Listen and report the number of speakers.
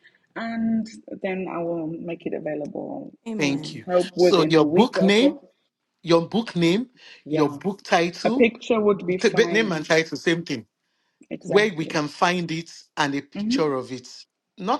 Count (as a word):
two